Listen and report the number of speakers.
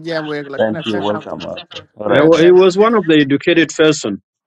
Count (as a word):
three